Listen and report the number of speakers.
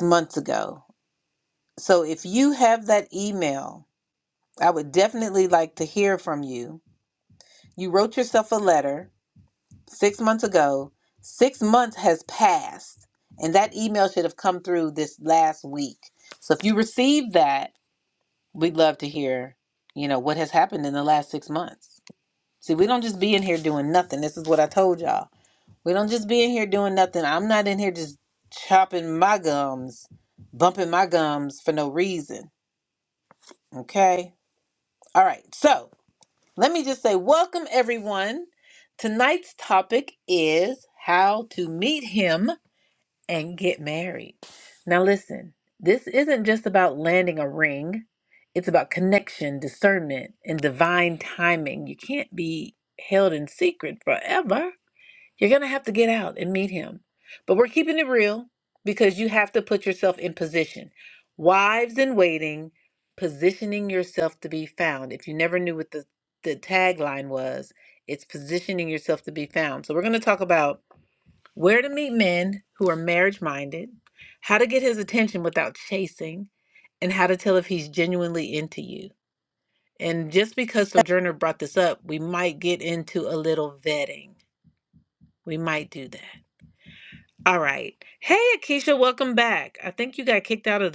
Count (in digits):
1